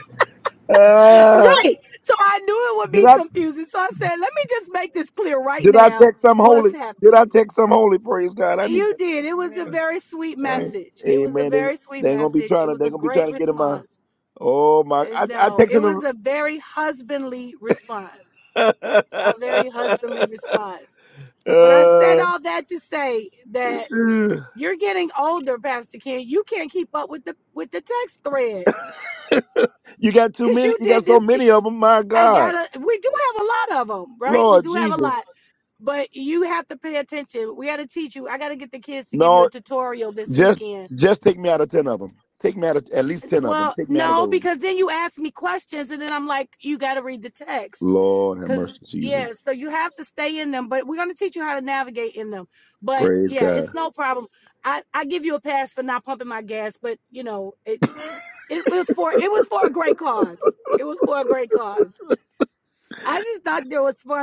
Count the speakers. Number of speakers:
two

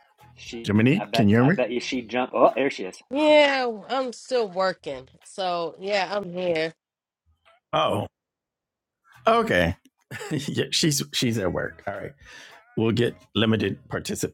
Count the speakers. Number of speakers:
three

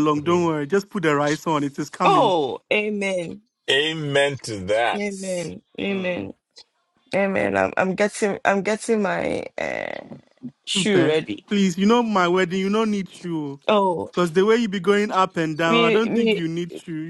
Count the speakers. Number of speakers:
three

